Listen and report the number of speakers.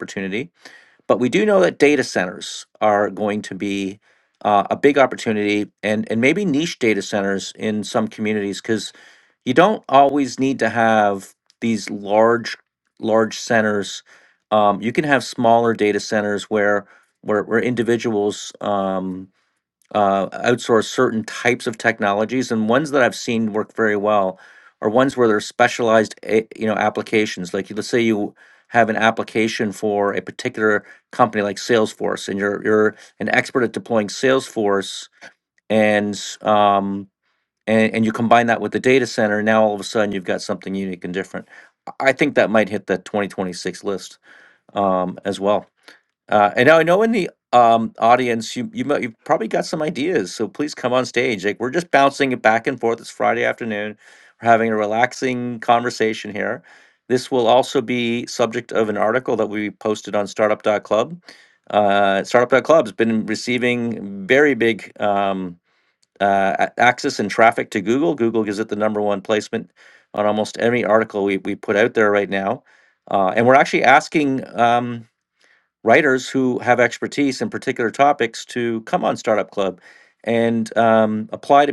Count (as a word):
one